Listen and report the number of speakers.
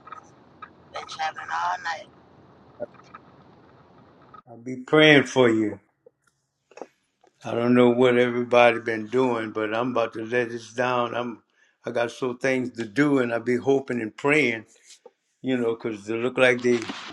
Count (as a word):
two